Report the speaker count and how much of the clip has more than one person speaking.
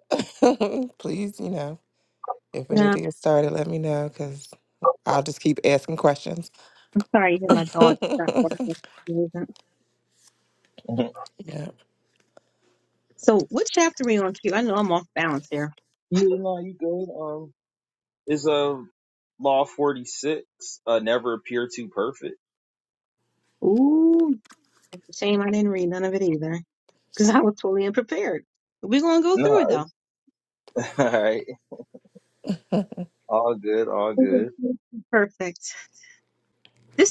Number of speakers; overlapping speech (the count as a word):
three, about 2%